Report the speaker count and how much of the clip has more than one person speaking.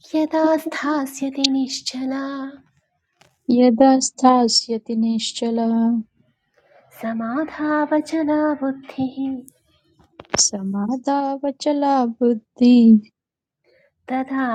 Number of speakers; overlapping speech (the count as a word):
two, no overlap